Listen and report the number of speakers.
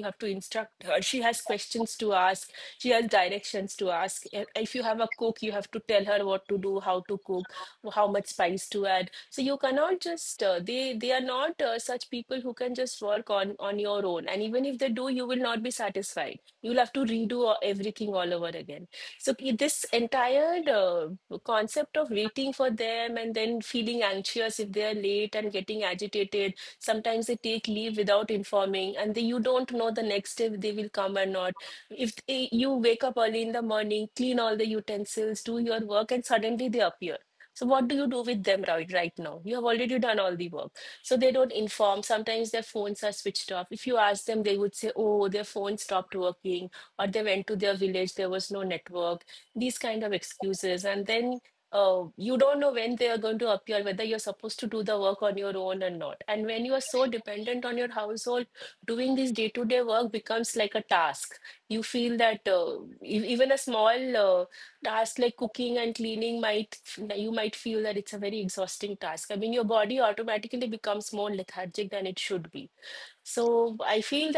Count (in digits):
1